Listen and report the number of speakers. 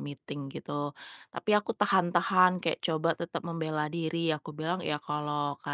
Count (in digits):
1